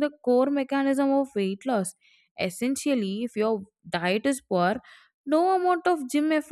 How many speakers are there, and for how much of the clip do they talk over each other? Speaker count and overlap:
one, no overlap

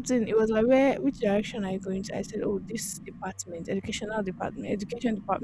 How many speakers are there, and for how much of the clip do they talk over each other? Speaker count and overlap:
one, no overlap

